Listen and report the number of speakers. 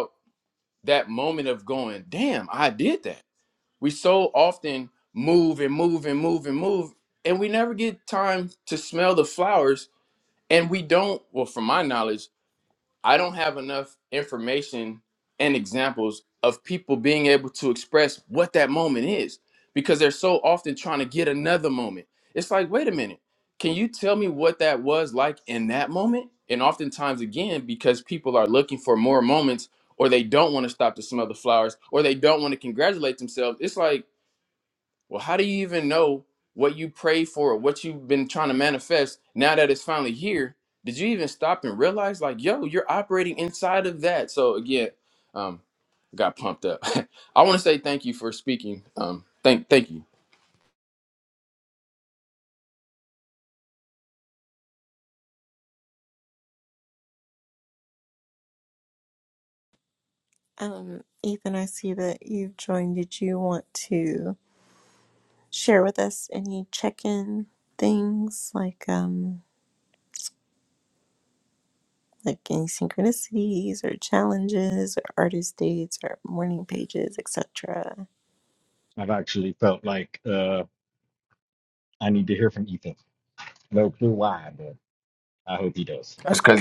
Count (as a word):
three